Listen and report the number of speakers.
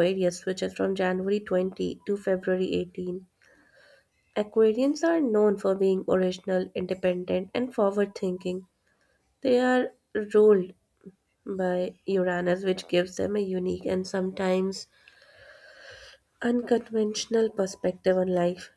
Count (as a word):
one